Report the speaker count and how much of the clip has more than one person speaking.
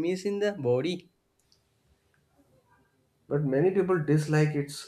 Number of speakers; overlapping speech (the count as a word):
two, no overlap